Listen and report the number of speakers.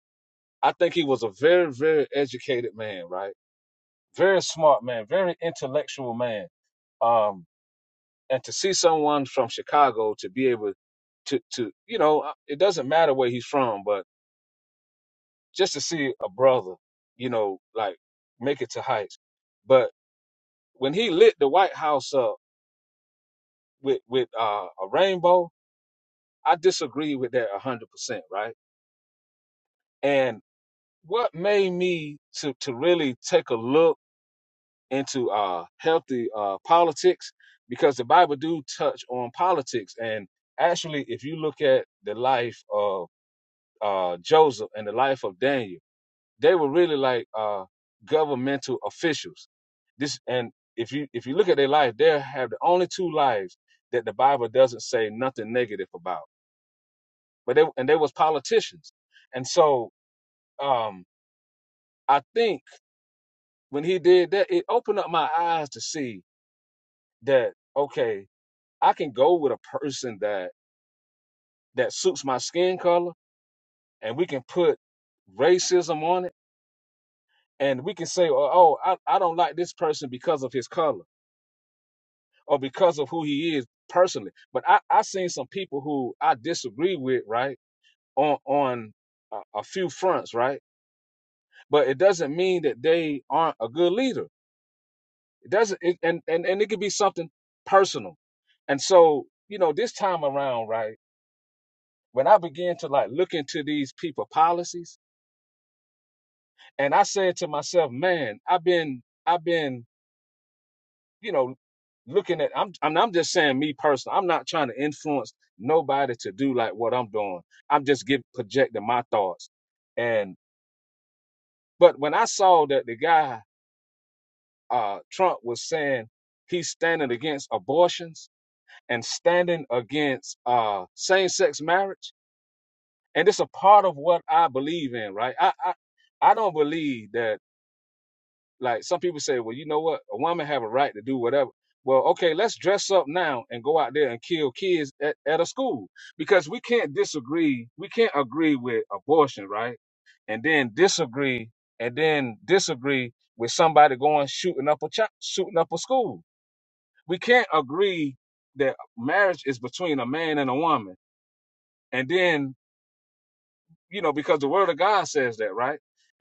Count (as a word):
one